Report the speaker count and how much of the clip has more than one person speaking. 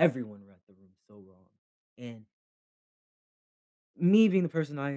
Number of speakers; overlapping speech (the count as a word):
one, no overlap